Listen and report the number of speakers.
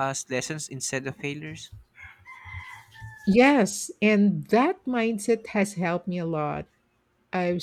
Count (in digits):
2